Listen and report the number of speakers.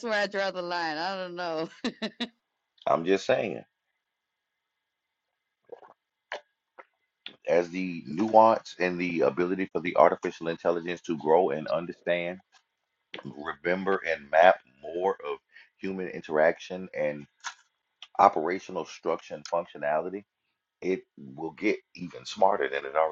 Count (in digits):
2